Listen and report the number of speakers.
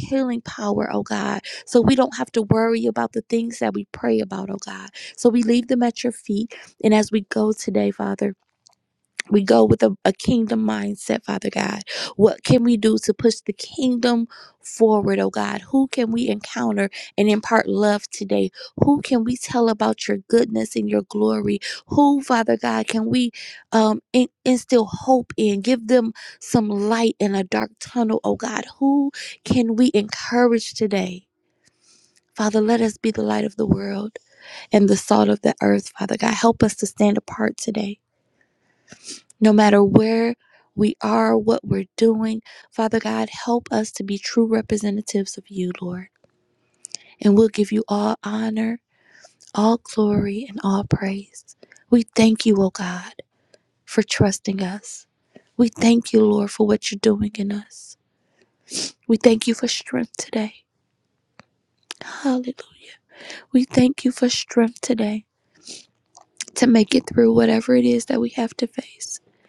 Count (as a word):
one